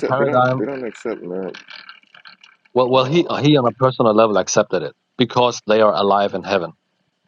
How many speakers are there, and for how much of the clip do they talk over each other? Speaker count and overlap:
2, about 18%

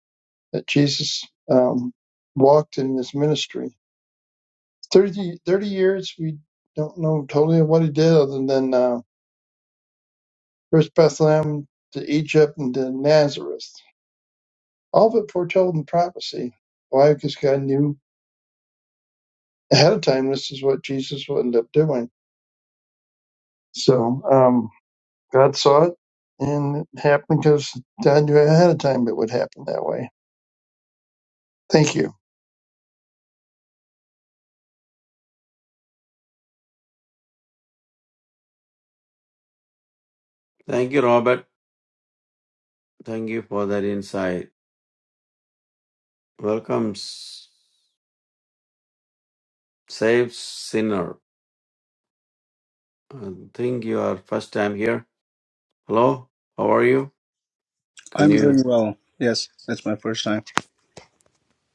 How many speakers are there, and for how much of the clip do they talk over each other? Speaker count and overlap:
3, about 1%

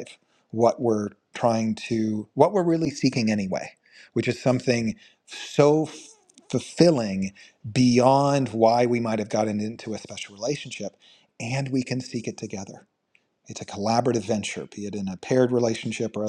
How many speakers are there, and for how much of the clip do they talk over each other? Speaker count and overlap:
1, no overlap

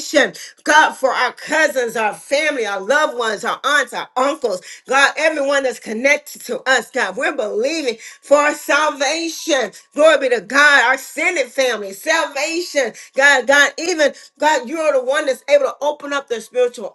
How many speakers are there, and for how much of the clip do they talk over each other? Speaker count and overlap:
1, no overlap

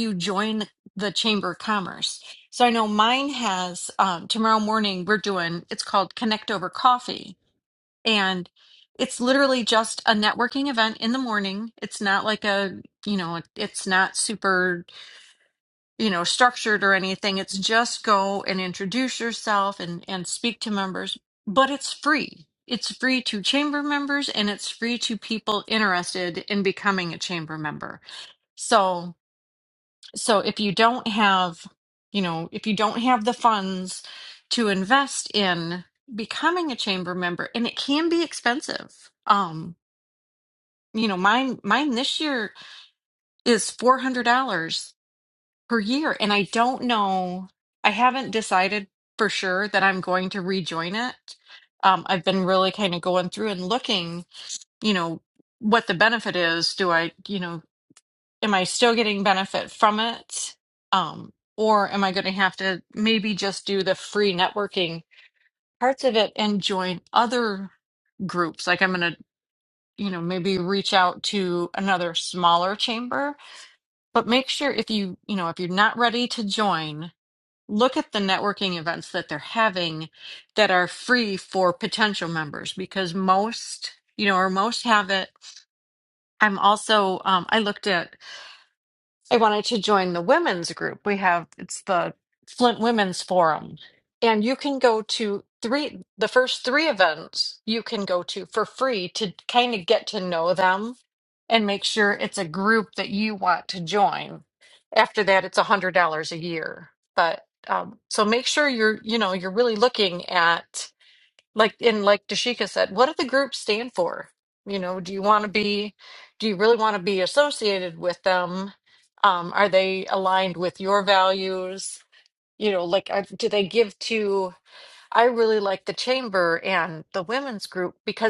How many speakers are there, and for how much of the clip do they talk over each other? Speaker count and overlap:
1, no overlap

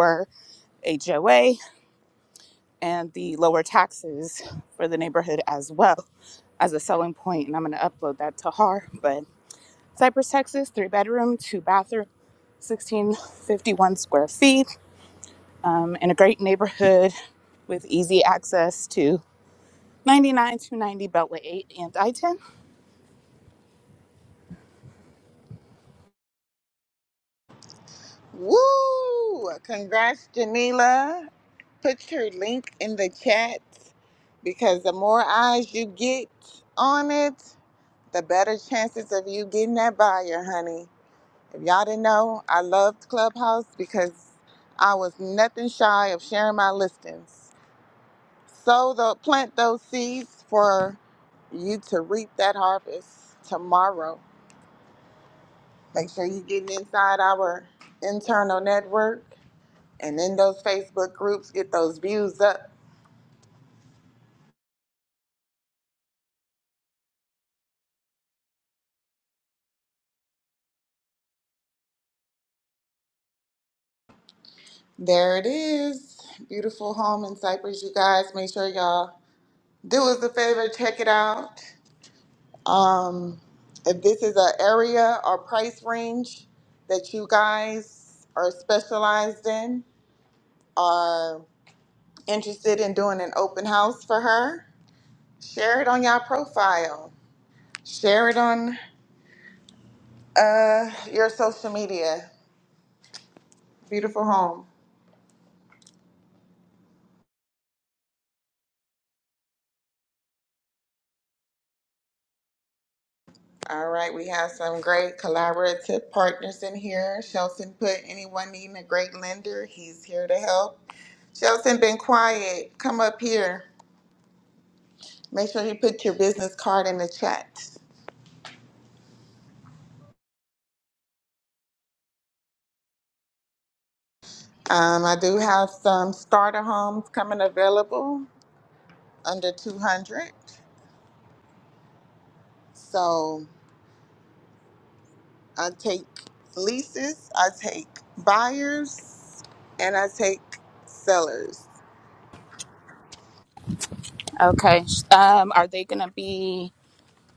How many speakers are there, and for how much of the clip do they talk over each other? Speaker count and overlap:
2, no overlap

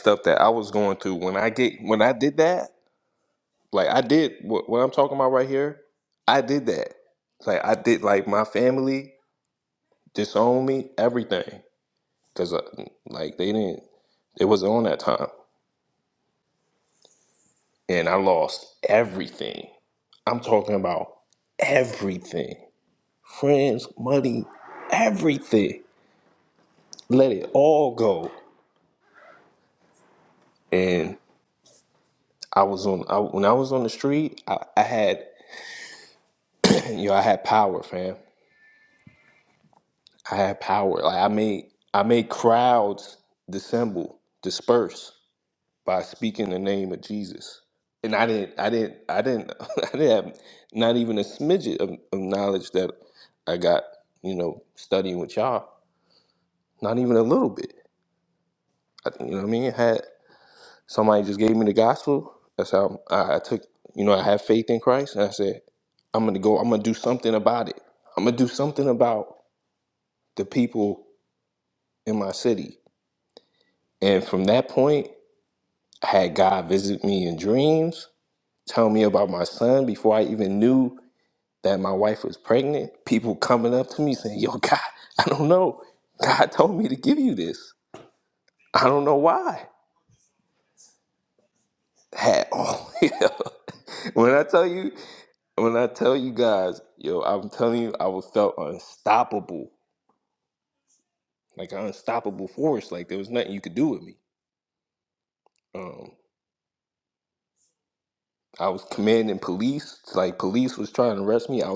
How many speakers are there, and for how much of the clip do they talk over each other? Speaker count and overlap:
1, no overlap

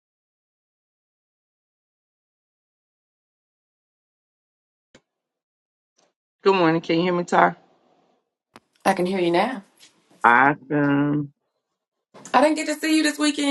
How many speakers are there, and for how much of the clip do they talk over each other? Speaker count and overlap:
2, no overlap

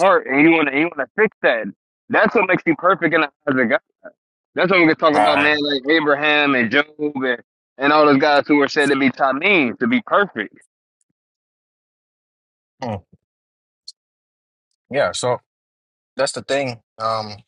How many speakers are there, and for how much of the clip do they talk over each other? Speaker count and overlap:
2, about 3%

